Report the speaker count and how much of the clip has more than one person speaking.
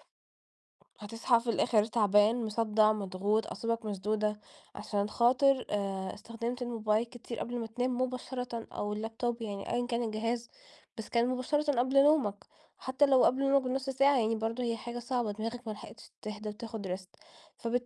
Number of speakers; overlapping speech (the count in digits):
1, no overlap